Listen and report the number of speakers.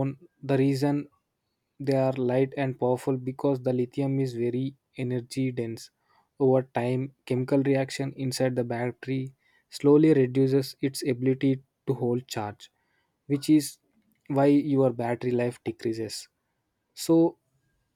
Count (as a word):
one